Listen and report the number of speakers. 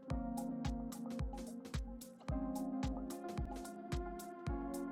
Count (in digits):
0